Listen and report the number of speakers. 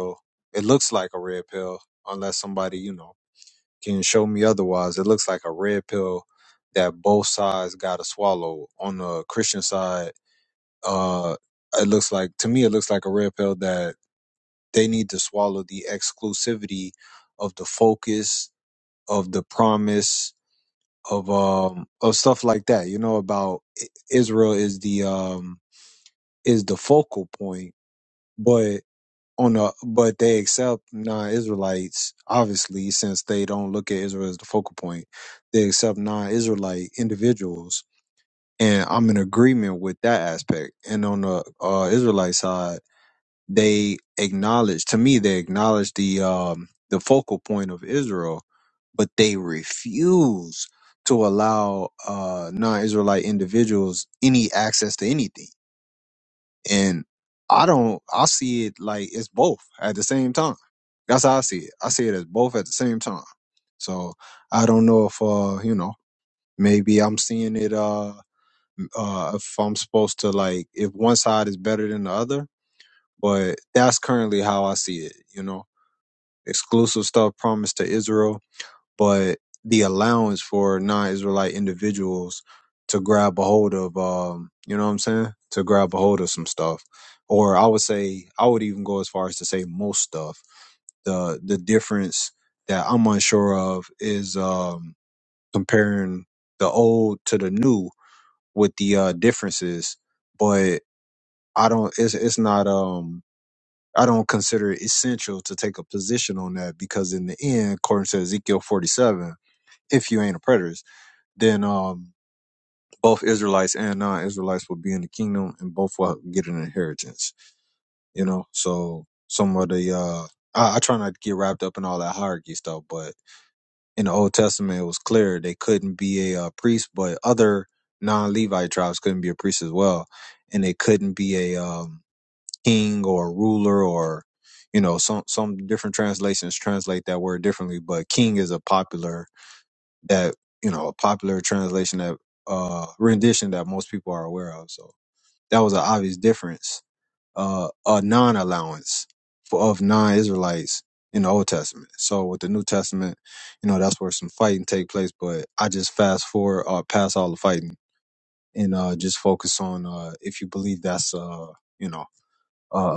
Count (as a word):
one